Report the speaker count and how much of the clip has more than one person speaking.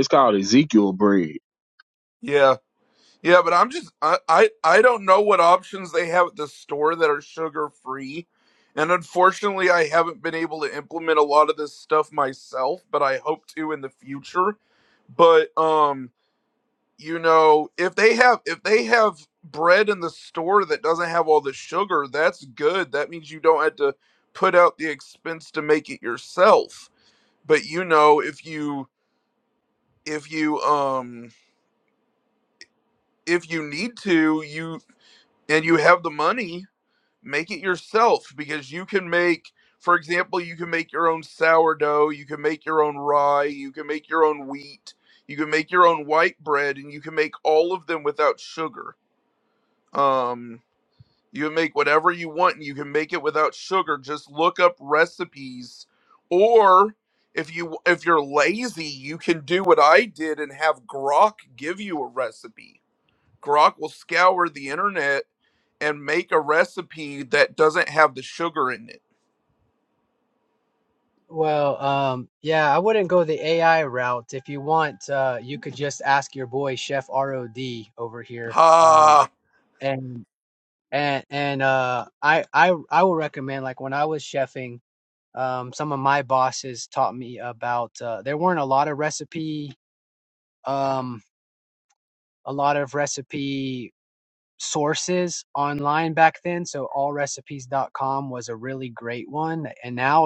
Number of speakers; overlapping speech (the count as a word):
three, about 1%